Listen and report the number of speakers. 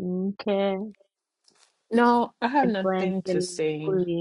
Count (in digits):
2